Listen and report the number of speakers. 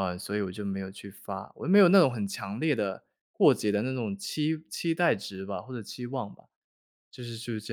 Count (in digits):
1